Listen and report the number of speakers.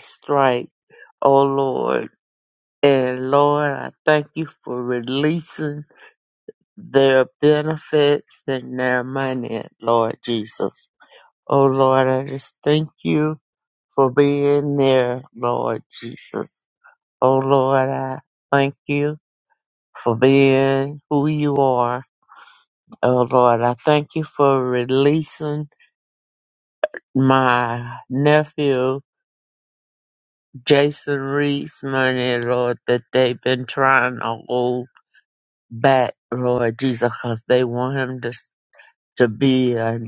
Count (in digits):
1